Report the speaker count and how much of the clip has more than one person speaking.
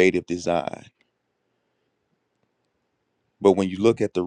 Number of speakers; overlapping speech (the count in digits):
1, no overlap